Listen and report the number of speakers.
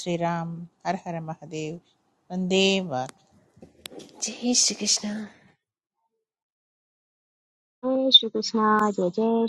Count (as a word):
three